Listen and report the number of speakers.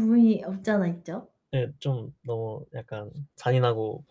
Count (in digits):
2